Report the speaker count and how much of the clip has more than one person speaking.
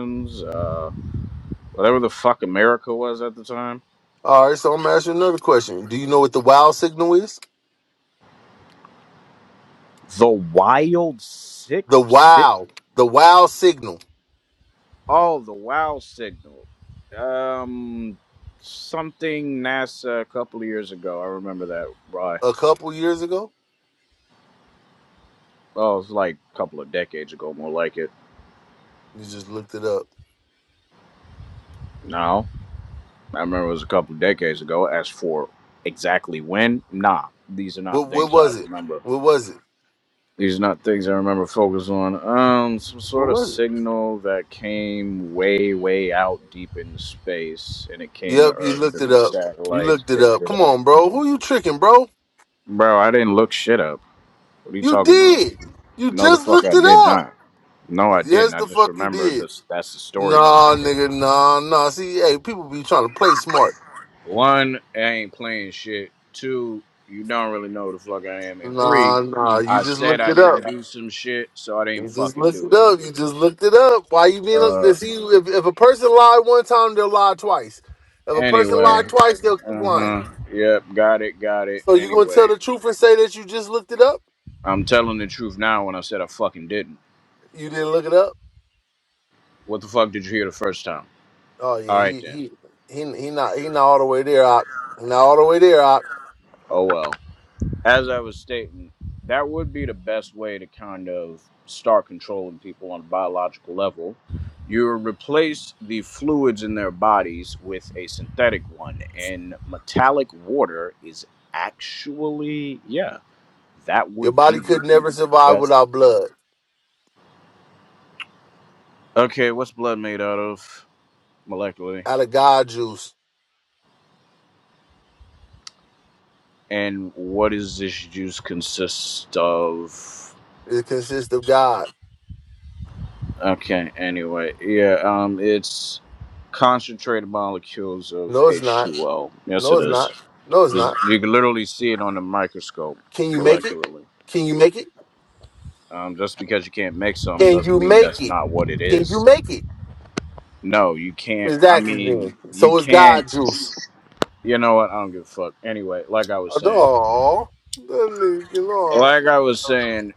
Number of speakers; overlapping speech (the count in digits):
2, about 12%